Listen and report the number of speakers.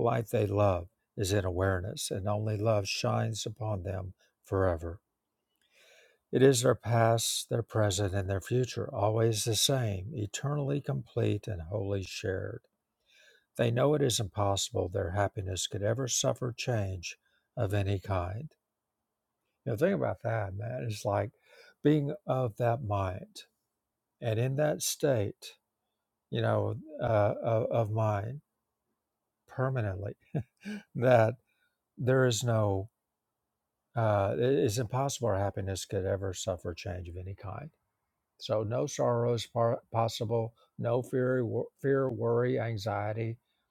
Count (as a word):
one